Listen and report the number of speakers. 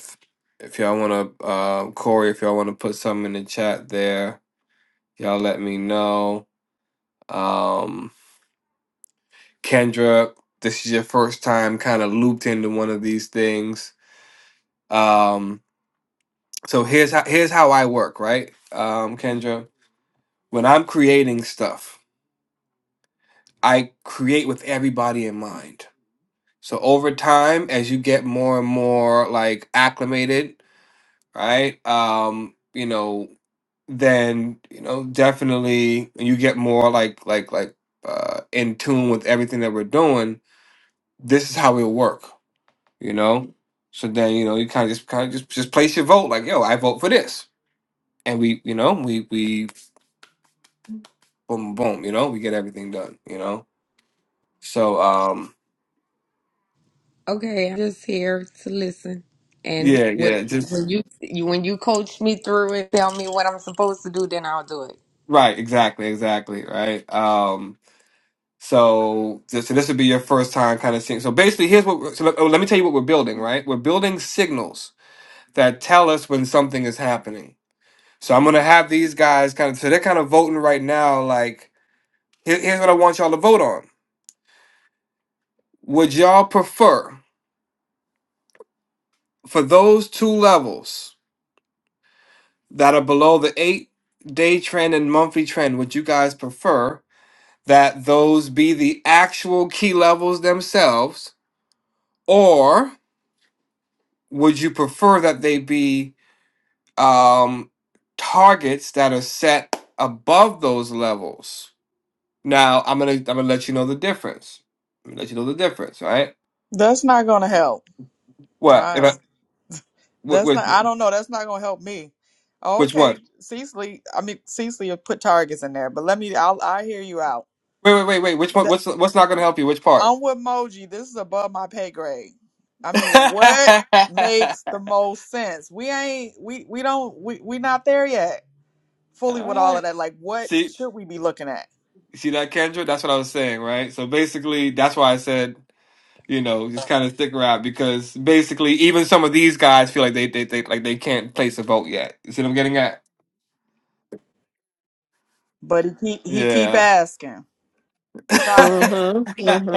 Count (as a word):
four